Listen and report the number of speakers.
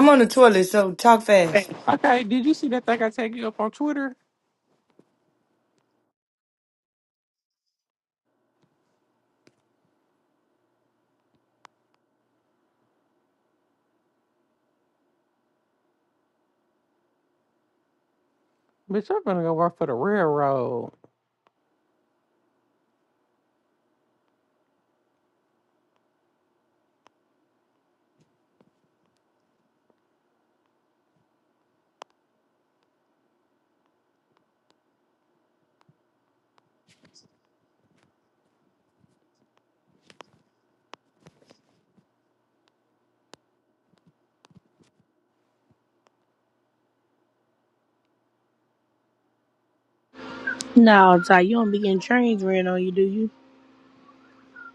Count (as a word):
three